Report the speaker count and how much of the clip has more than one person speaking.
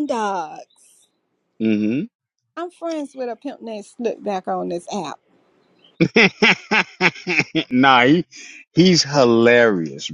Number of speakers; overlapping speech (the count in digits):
2, no overlap